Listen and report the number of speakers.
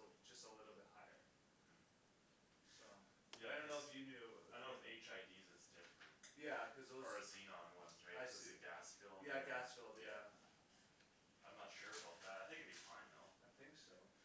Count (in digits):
2